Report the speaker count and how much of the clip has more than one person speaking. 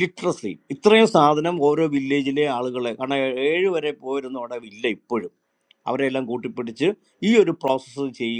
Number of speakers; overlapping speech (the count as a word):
one, no overlap